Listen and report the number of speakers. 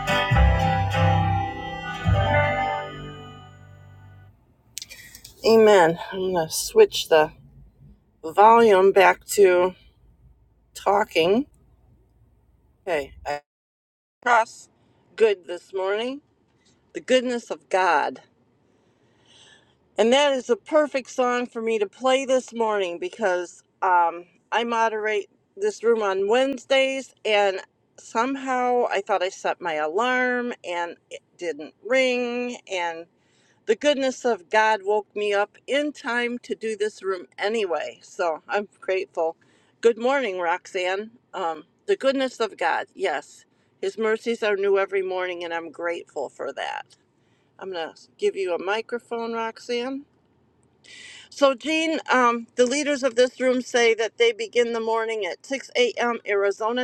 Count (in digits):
1